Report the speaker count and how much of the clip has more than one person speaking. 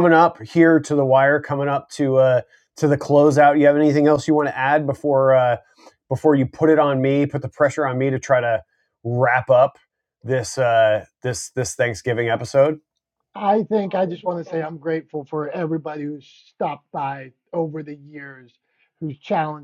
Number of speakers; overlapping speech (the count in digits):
2, no overlap